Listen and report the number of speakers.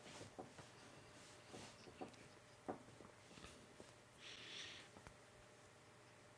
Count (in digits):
0